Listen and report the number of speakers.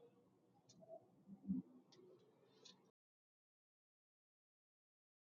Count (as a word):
zero